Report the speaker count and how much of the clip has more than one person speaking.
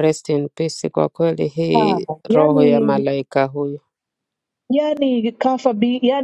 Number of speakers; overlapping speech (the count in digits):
2, about 21%